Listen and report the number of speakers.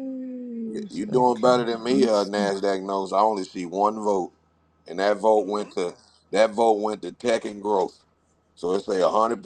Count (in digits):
2